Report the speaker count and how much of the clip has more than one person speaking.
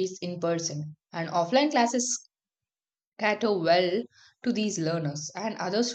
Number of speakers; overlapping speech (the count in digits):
1, no overlap